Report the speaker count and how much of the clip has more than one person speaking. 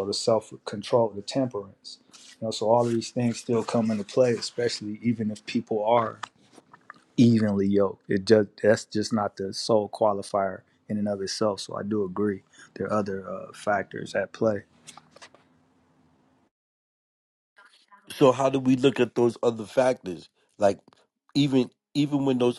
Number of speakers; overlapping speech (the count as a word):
two, no overlap